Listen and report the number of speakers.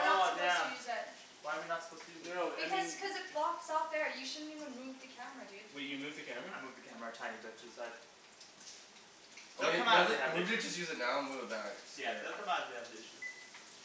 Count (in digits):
4